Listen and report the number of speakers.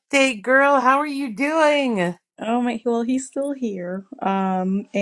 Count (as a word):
two